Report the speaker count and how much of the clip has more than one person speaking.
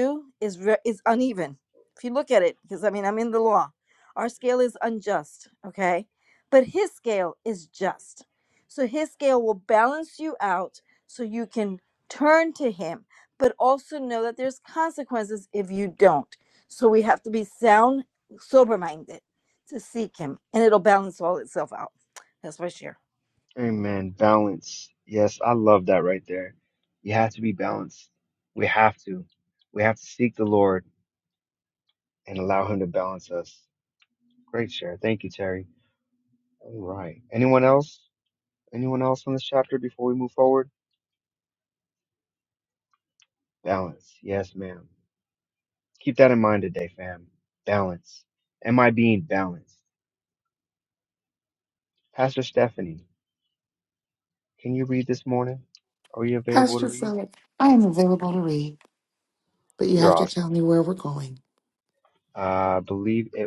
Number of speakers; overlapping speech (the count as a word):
three, about 2%